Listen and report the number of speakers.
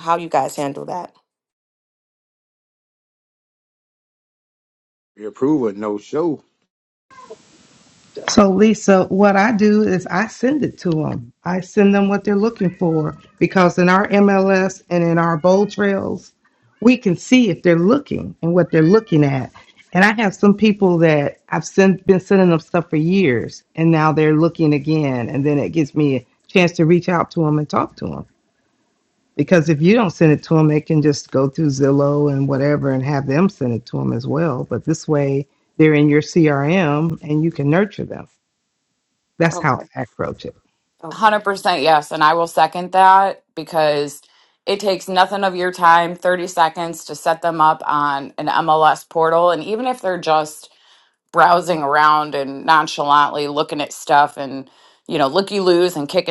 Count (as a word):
four